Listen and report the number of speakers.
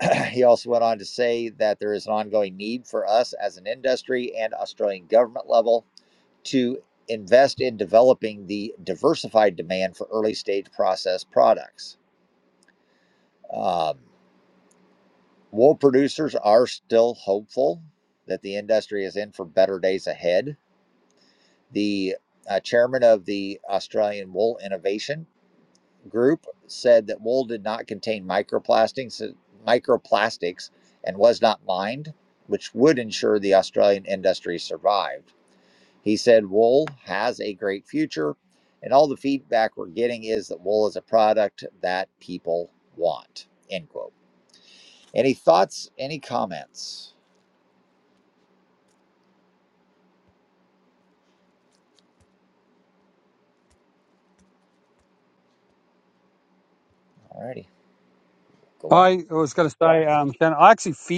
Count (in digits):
2